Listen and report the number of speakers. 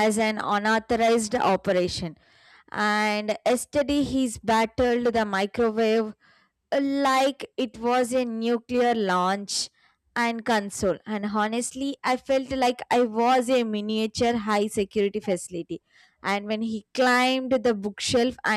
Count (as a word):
one